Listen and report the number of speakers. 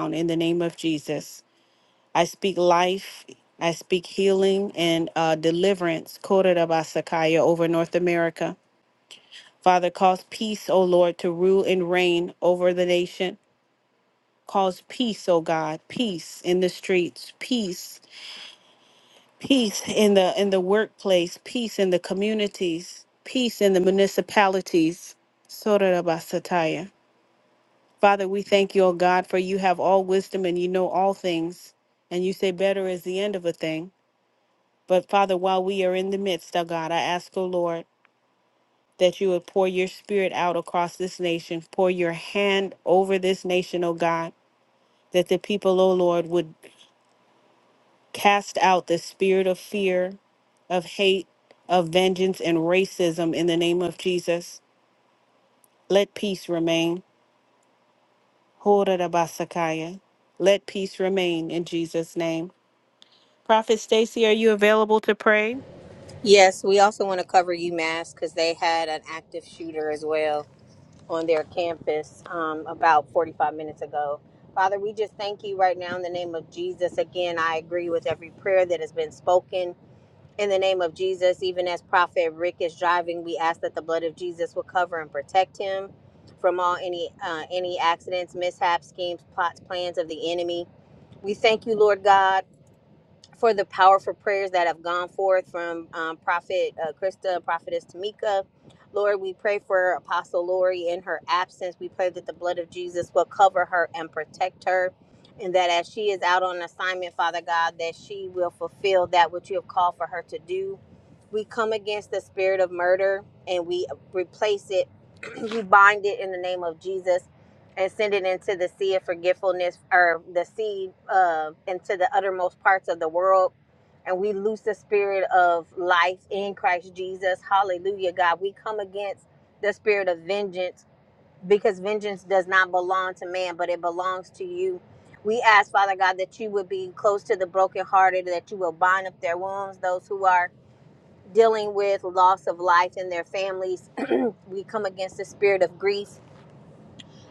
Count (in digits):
2